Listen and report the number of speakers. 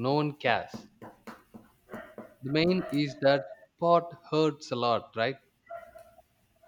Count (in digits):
1